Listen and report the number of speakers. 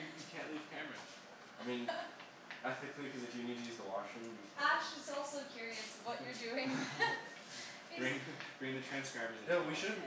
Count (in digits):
3